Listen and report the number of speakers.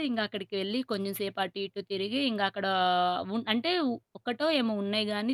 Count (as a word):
one